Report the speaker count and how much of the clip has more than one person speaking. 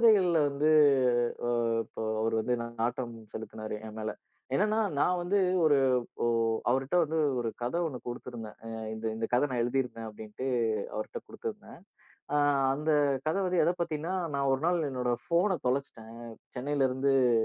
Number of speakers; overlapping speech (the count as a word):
one, no overlap